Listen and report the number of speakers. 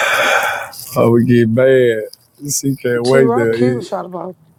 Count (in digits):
2